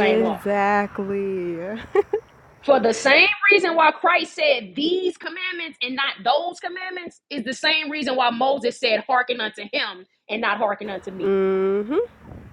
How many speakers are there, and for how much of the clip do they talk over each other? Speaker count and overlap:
2, about 4%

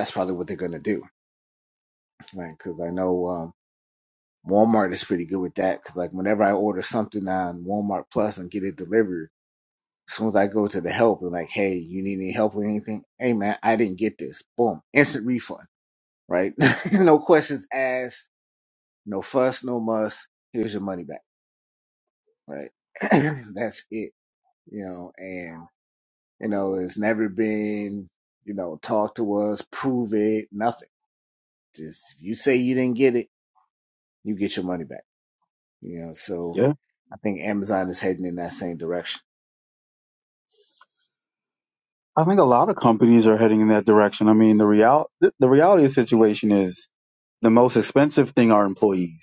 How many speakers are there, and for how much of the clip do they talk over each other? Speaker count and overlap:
2, under 1%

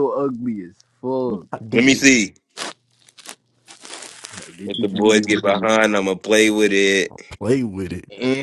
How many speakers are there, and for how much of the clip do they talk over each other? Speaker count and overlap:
3, about 12%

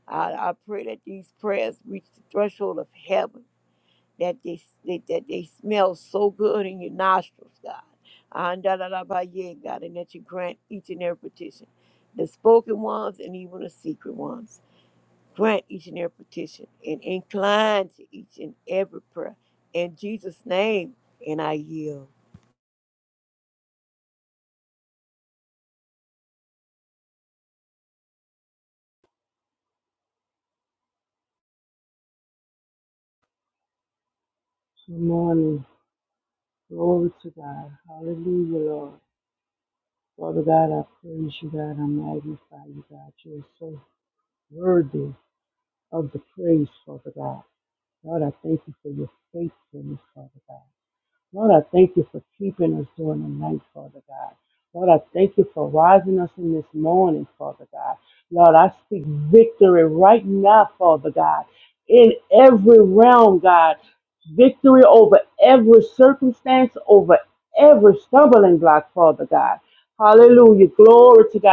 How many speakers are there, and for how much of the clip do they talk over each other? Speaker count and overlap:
2, no overlap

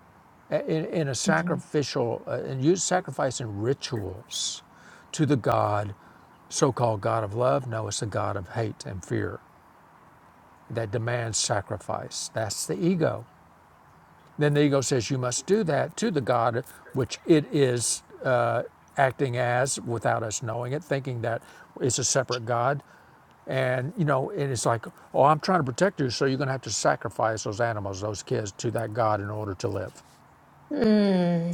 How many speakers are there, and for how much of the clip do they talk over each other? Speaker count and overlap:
2, about 1%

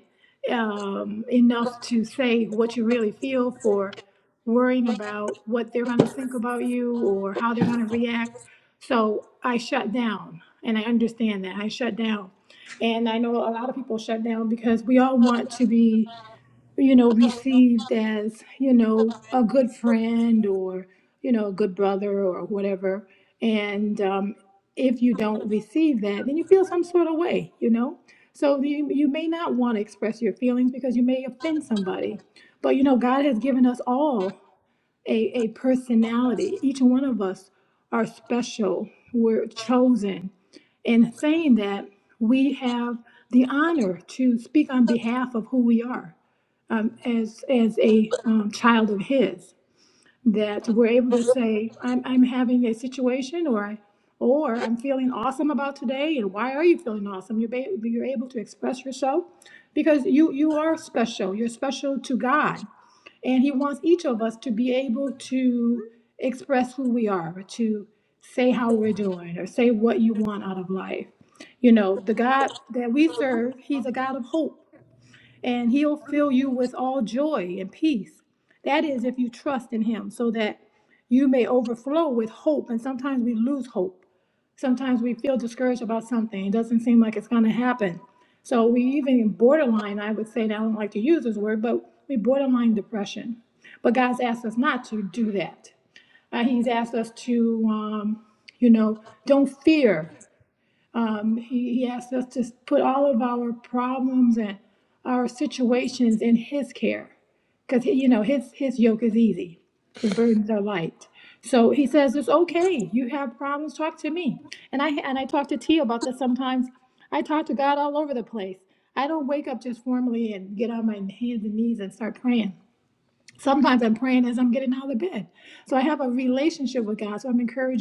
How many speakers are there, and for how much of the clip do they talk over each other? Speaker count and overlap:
1, no overlap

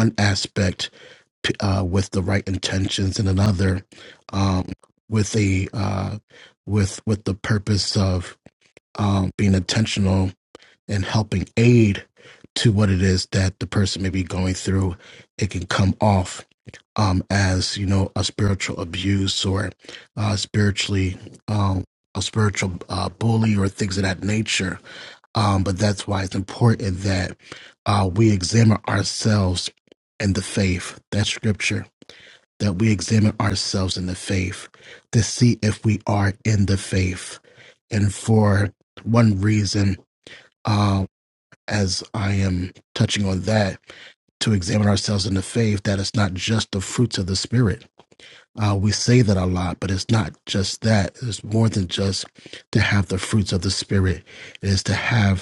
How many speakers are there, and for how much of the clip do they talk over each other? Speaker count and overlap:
1, no overlap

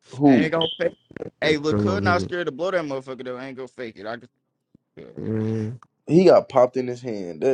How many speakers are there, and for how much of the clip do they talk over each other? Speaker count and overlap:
3, about 11%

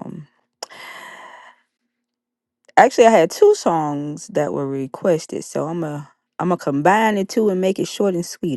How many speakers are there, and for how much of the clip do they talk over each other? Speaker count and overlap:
1, no overlap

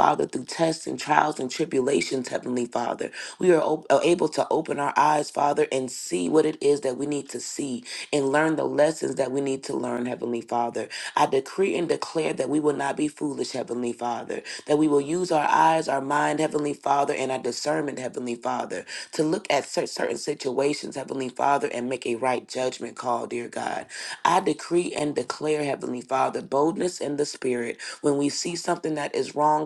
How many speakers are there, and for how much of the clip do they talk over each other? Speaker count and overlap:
1, no overlap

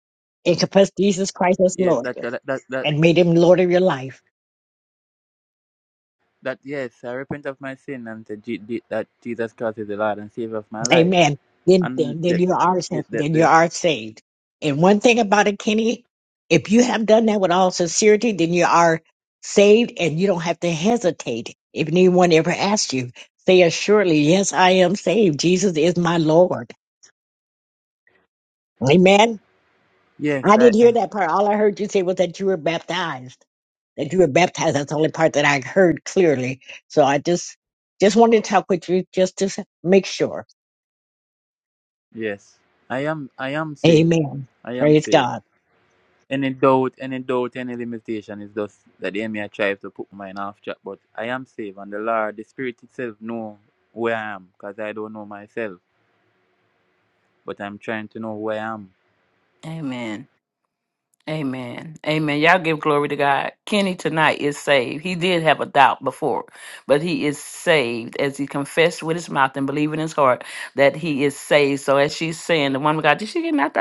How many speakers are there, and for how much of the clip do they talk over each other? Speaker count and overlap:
3, about 5%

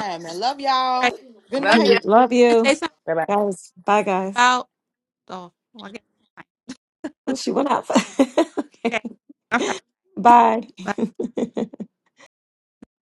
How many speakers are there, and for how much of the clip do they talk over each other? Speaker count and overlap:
3, about 4%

